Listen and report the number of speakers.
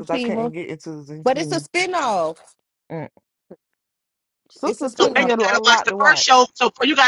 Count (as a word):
three